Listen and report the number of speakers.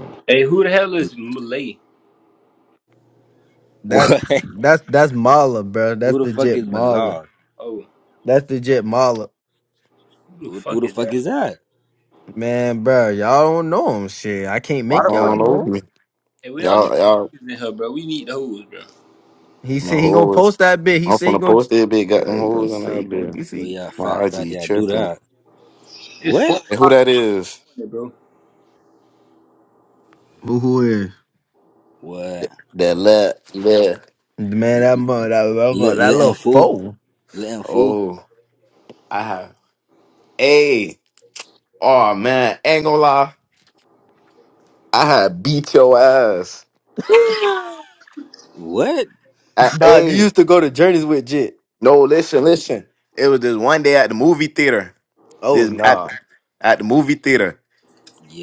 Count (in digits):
4